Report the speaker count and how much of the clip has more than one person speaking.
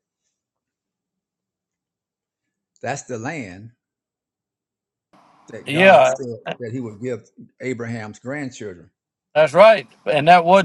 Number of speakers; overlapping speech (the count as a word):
two, about 4%